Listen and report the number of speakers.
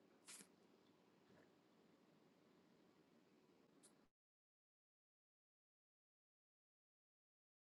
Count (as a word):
zero